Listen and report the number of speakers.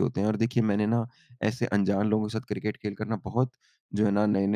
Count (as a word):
one